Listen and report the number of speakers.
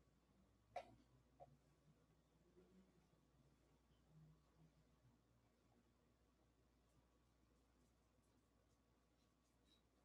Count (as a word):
zero